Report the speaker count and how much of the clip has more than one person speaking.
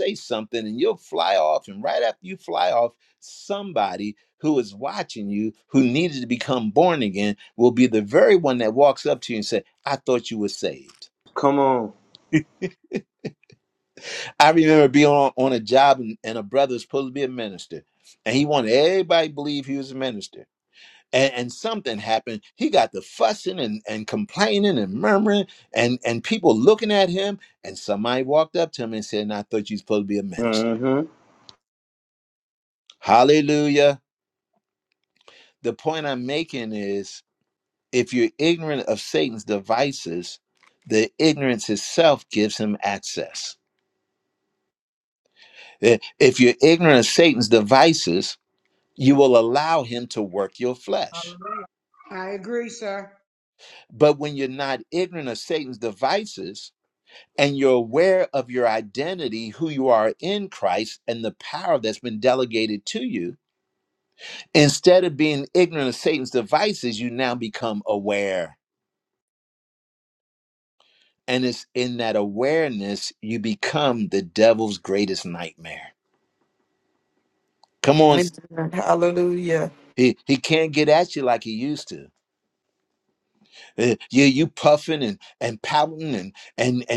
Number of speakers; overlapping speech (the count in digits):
4, about 1%